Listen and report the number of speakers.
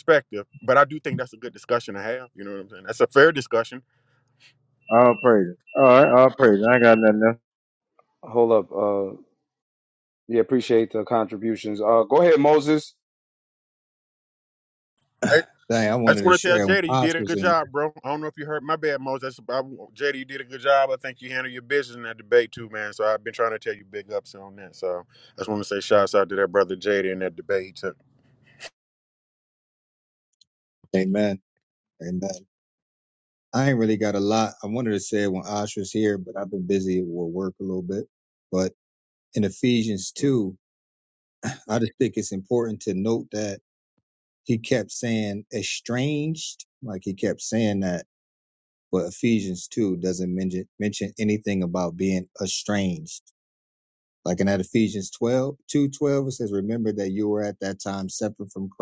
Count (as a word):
four